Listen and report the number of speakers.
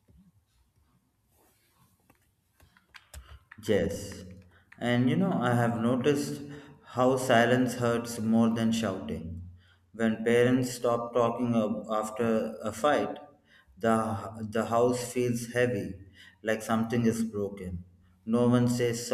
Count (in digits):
1